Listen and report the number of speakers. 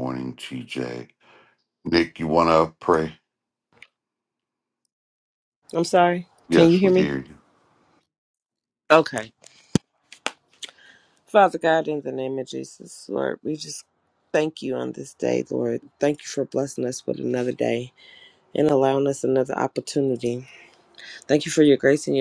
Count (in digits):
2